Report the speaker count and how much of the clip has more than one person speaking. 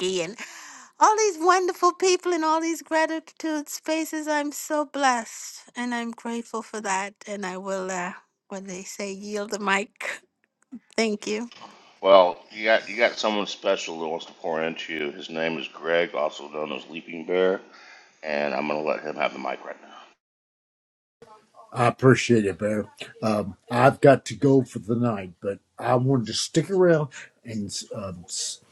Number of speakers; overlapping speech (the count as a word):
three, no overlap